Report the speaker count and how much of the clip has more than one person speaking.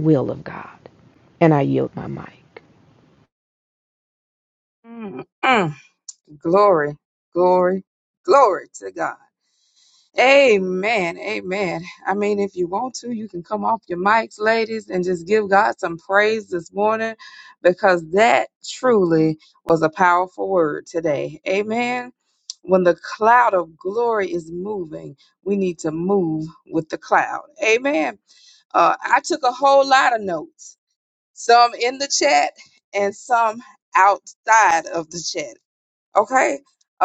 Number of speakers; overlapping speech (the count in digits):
2, no overlap